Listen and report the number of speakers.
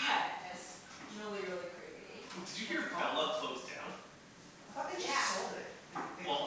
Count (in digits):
3